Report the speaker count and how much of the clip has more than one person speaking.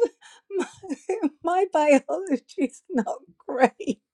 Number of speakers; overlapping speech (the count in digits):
1, no overlap